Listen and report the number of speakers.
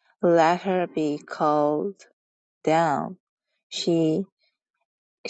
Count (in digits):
1